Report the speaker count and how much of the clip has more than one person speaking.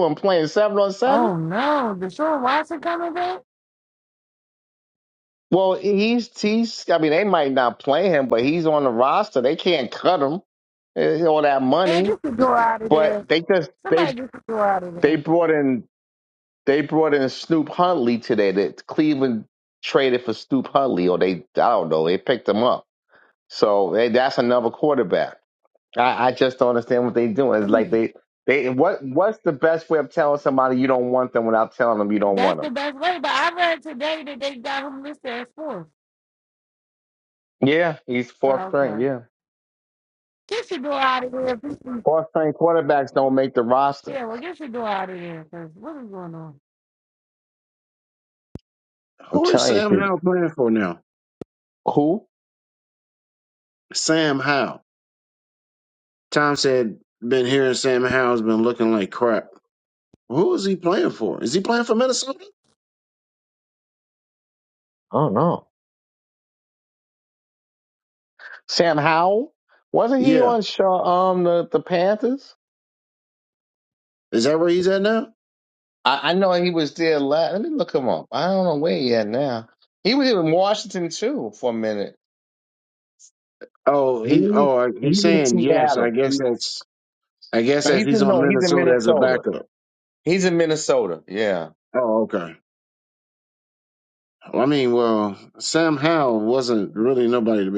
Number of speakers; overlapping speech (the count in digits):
3, about 7%